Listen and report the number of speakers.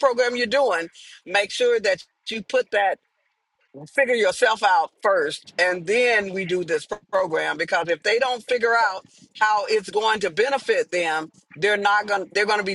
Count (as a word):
one